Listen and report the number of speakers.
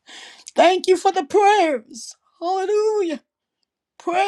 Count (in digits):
1